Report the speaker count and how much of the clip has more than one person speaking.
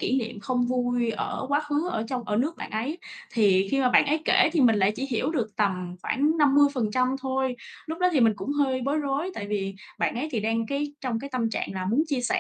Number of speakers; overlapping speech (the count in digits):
1, no overlap